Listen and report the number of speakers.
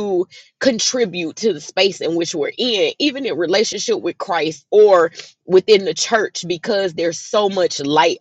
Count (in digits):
1